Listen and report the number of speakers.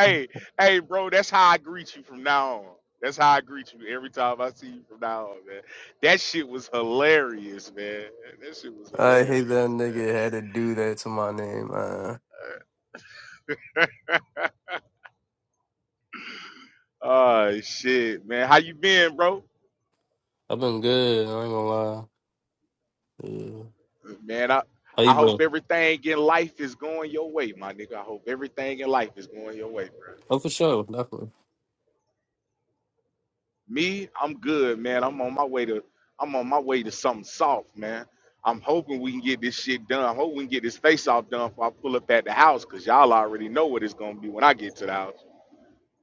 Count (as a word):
two